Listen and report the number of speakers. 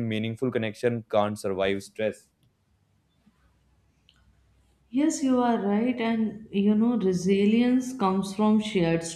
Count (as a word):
two